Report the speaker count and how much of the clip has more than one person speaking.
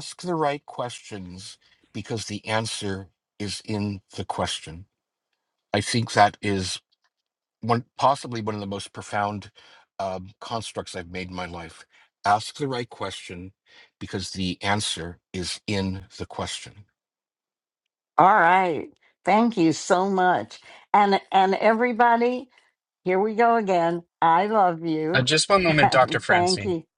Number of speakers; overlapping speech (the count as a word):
three, about 2%